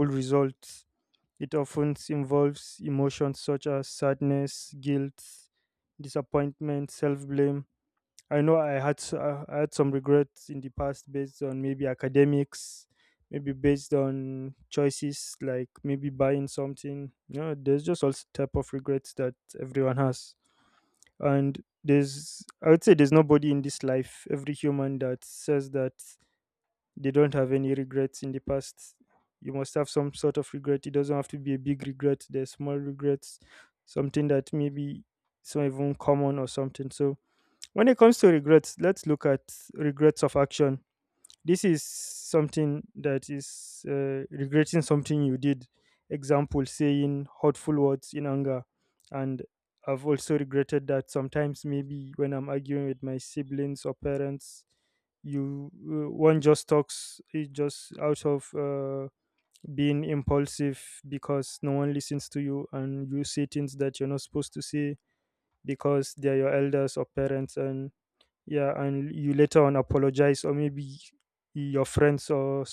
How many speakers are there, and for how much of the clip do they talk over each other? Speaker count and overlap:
1, no overlap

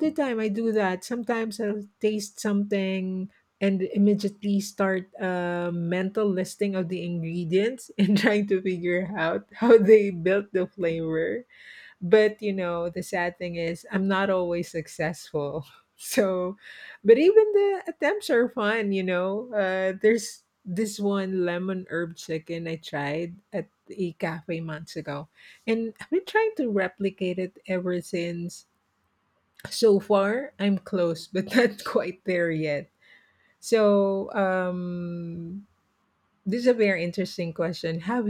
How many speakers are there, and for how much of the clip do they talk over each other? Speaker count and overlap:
1, no overlap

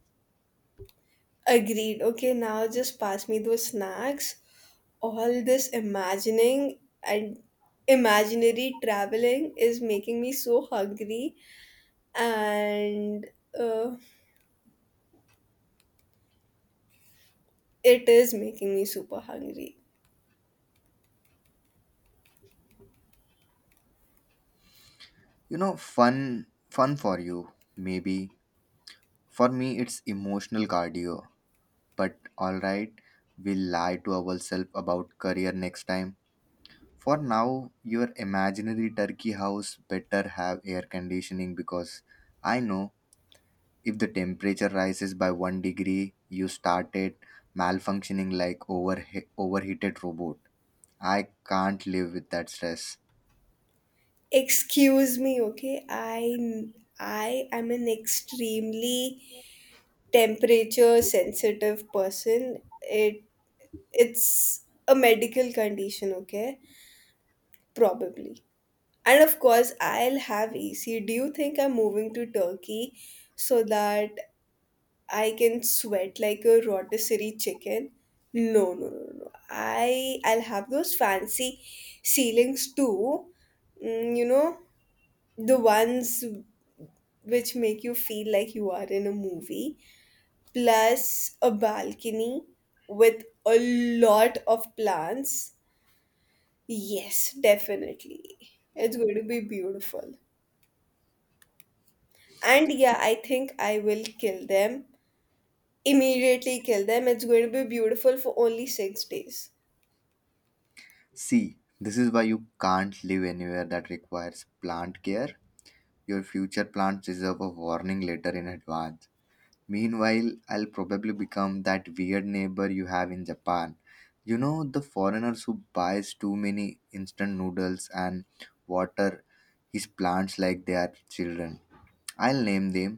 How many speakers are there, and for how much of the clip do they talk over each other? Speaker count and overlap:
2, no overlap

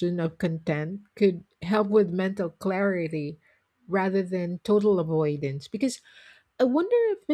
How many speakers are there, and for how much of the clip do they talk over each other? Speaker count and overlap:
1, no overlap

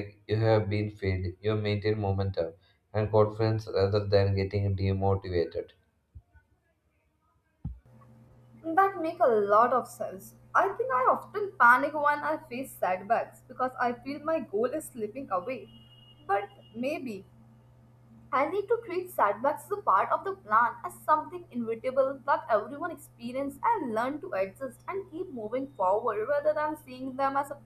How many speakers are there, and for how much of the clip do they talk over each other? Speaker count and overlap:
2, no overlap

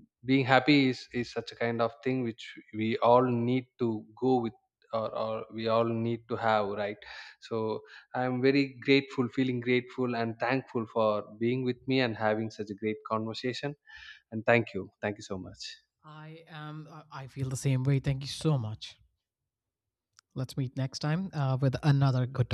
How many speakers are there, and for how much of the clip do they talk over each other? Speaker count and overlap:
2, no overlap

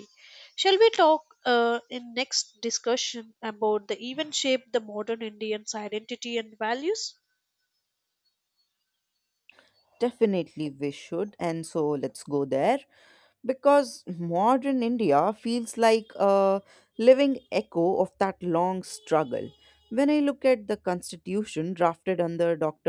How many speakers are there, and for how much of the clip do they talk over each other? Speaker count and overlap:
2, no overlap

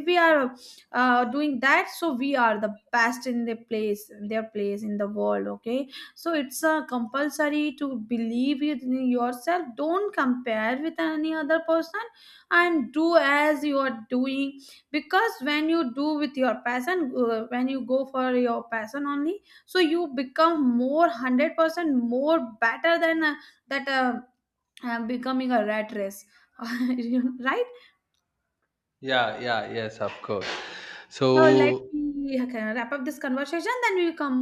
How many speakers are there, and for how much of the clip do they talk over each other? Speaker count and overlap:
2, about 2%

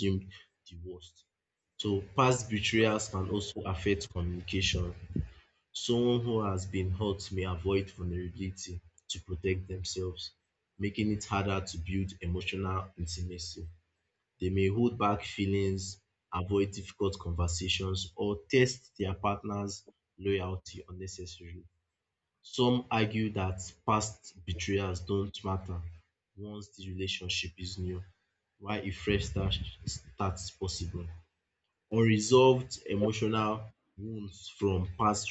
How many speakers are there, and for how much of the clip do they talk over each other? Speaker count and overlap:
1, no overlap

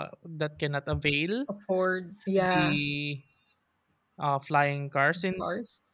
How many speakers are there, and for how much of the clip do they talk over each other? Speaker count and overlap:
2, about 8%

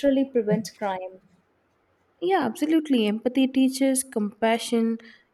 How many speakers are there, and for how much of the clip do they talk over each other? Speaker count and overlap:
2, no overlap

